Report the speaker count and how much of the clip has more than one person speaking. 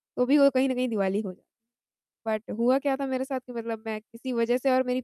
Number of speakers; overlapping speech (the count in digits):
1, no overlap